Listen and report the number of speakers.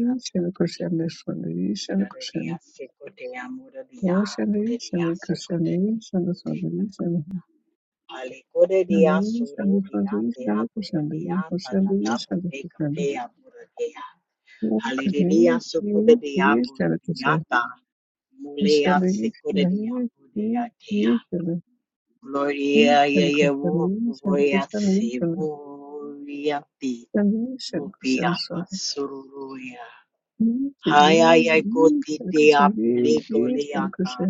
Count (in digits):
2